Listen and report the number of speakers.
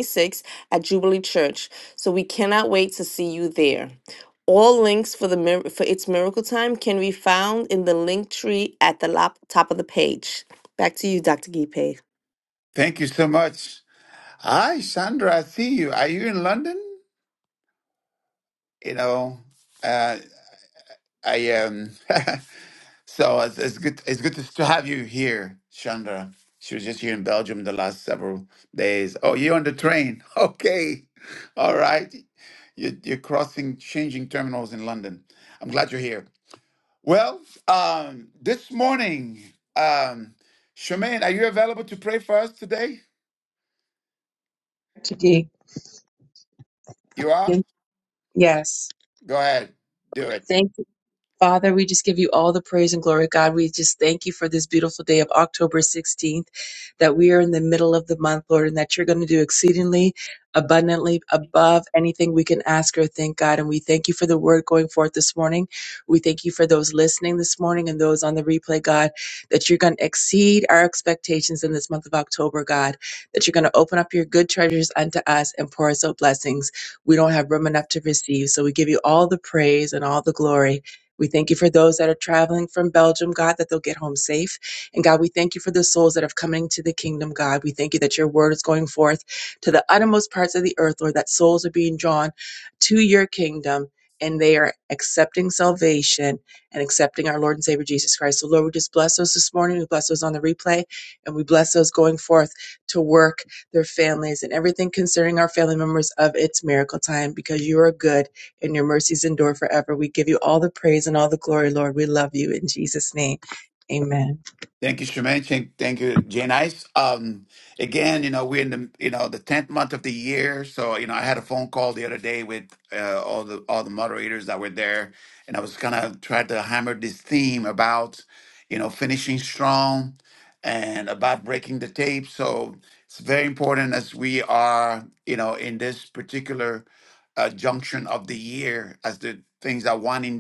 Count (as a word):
three